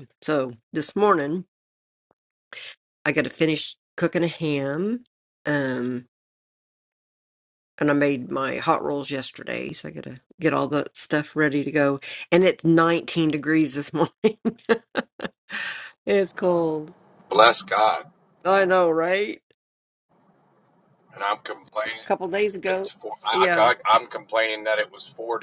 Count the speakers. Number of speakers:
two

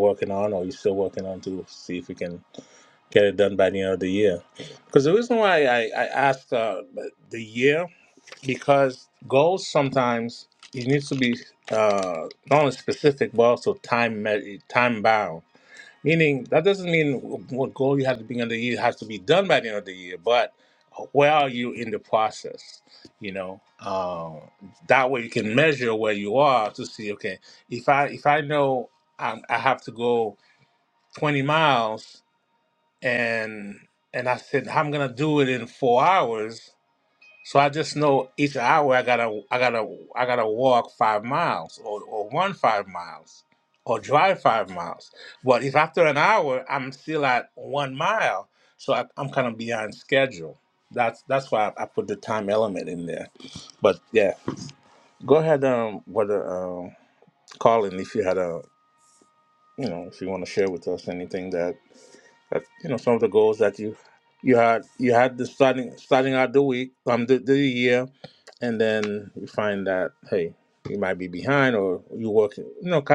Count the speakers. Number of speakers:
one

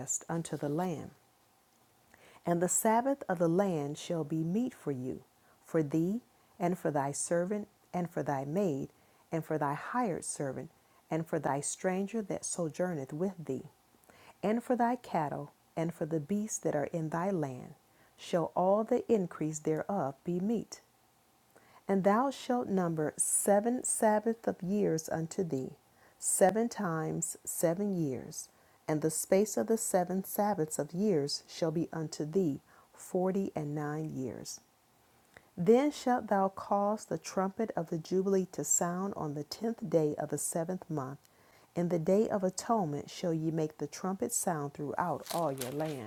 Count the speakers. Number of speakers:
one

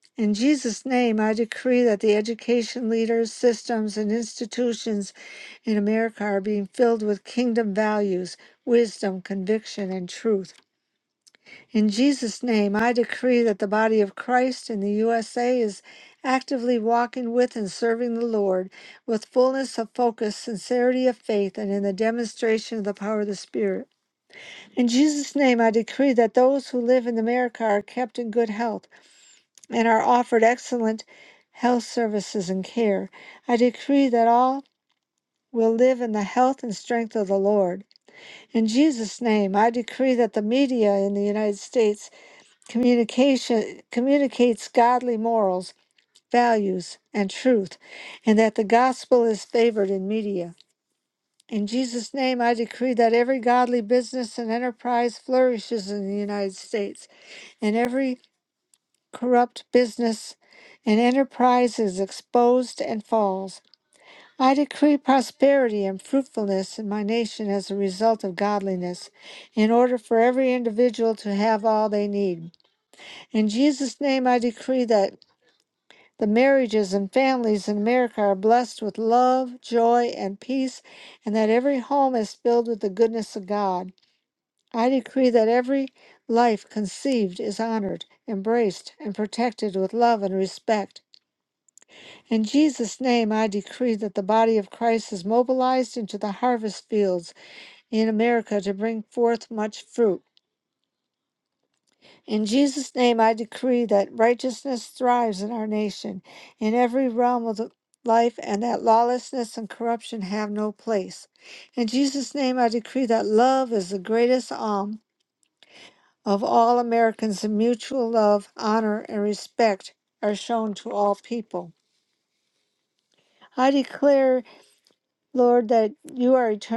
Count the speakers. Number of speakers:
one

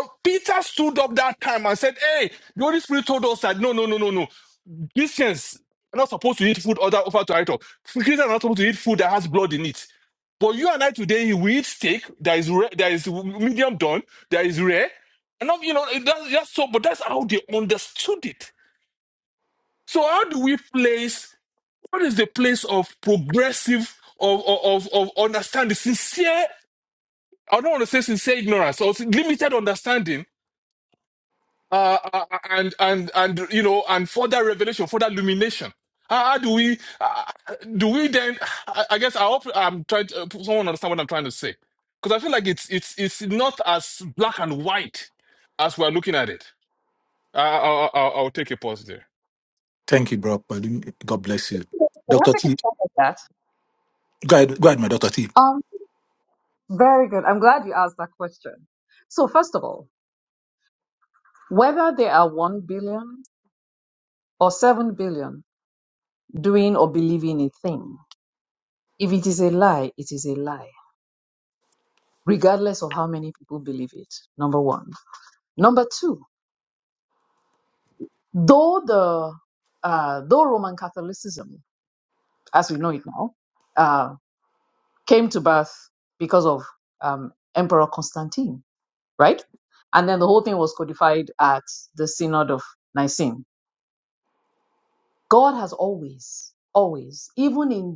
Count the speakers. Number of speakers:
three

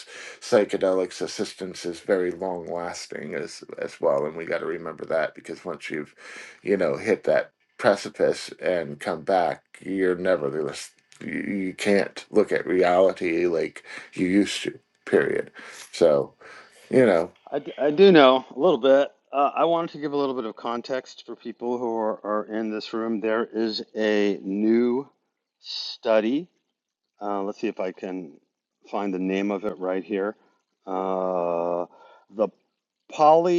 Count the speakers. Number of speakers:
two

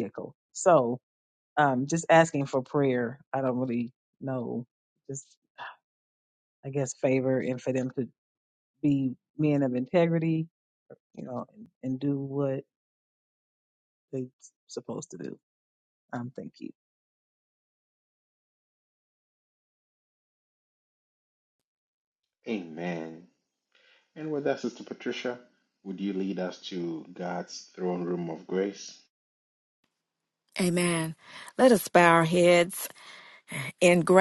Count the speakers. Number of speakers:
three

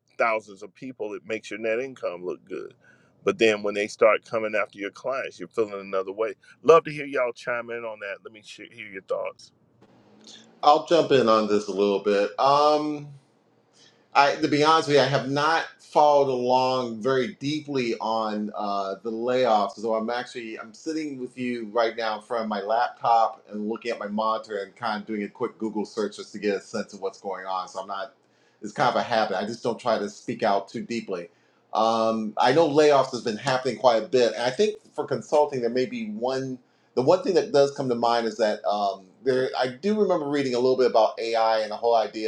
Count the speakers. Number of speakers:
two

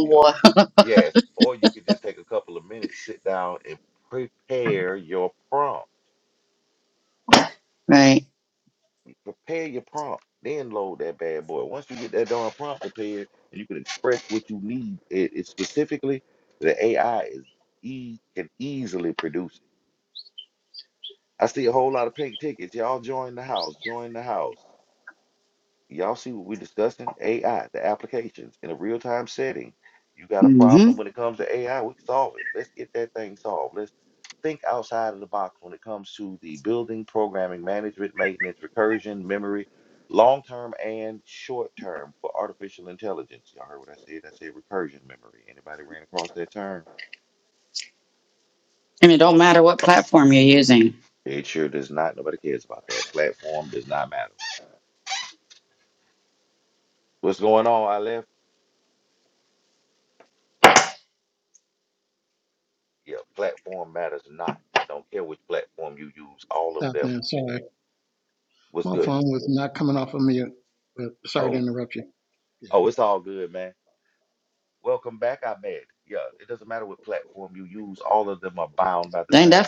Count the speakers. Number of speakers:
three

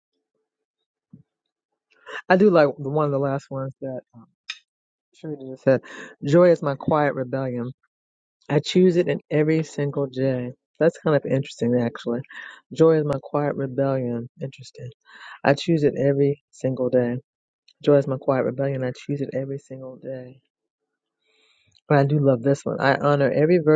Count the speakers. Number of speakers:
one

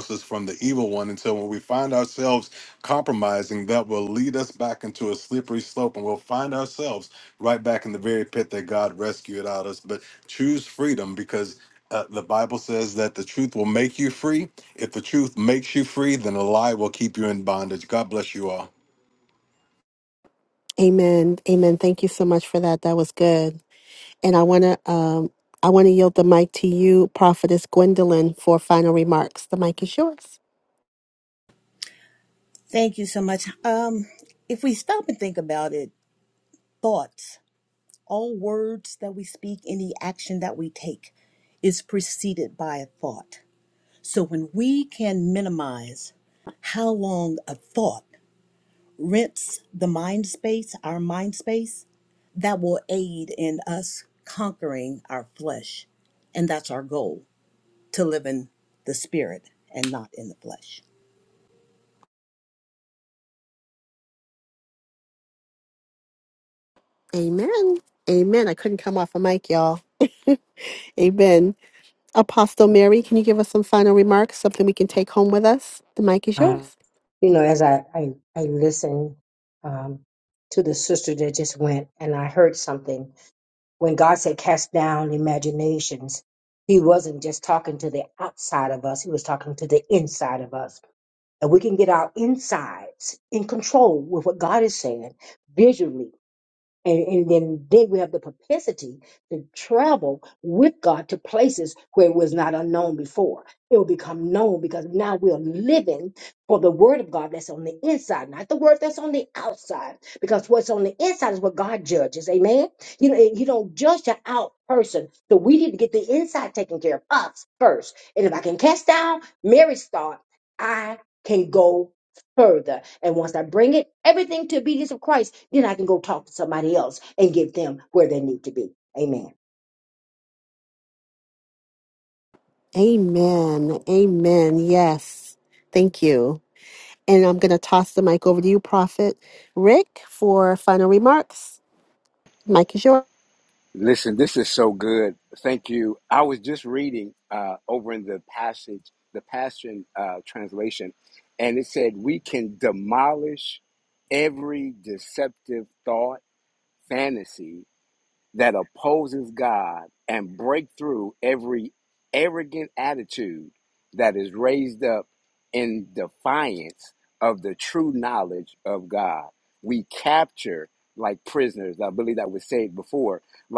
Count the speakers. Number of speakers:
five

